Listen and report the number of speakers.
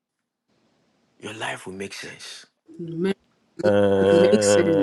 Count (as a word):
three